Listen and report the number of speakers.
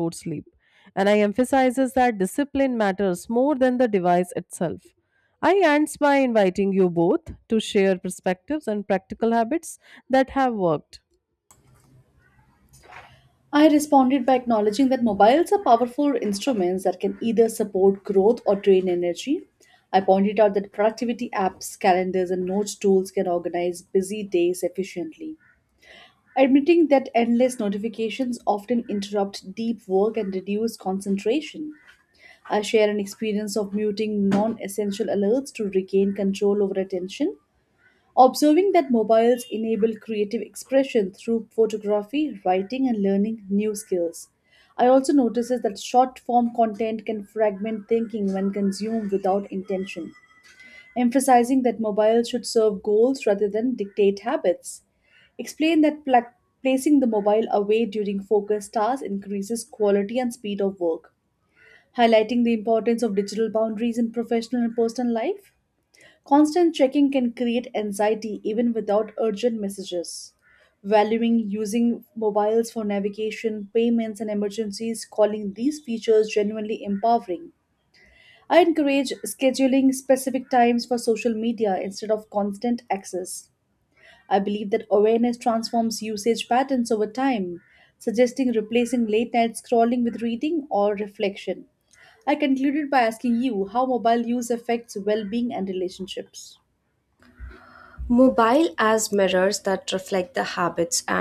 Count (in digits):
3